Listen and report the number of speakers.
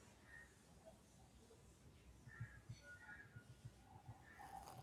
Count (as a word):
zero